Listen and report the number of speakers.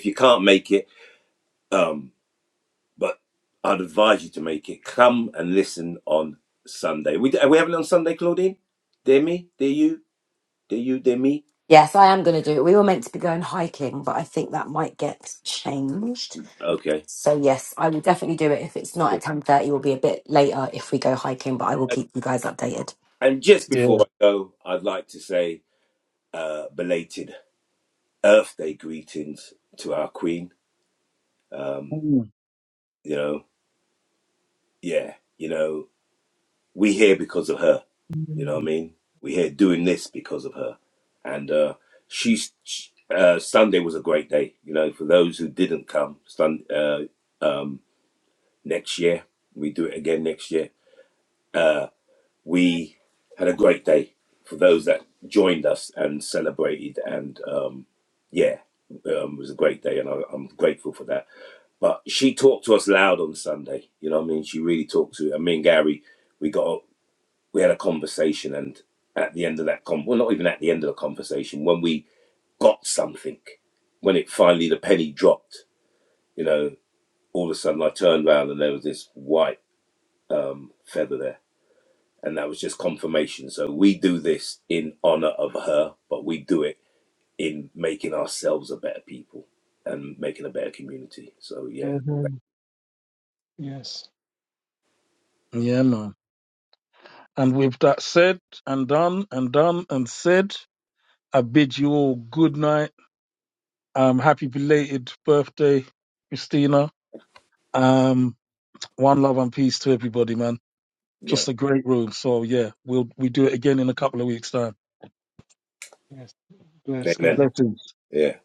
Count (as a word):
four